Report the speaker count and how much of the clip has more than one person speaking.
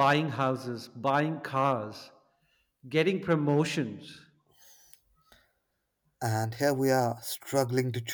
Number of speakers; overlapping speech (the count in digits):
2, no overlap